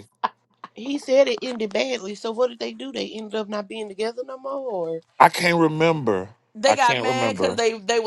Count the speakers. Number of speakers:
3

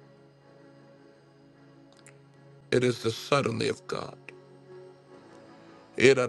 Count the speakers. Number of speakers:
1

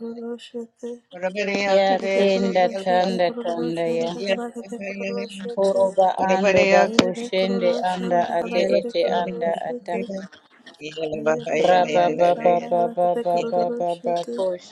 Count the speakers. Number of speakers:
3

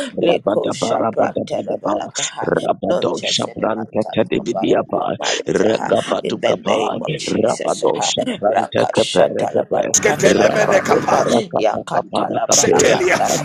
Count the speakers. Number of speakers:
3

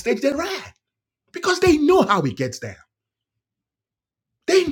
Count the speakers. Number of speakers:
1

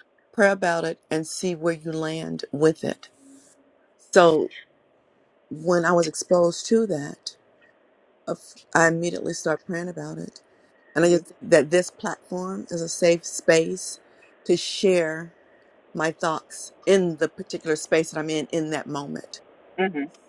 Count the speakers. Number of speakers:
1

